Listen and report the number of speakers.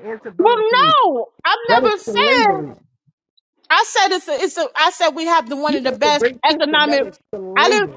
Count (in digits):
2